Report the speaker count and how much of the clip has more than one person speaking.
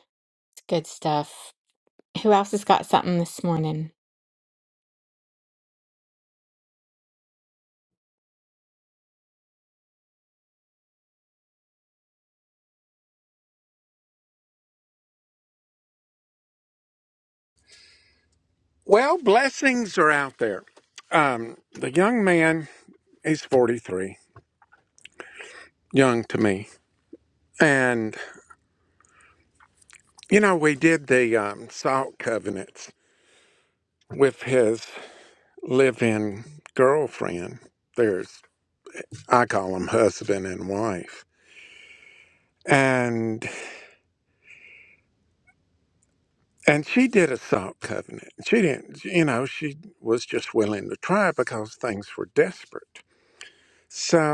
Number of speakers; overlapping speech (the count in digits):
2, no overlap